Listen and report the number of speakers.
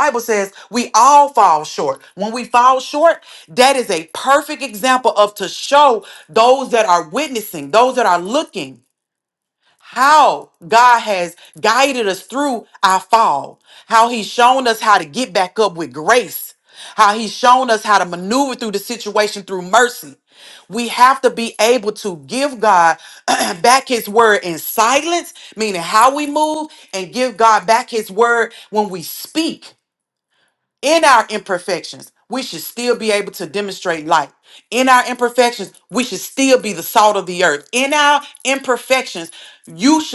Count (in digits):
1